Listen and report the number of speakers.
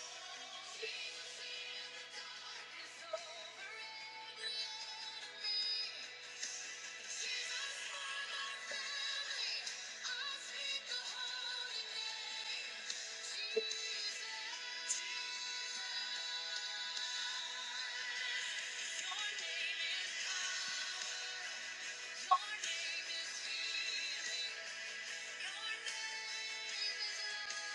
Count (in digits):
0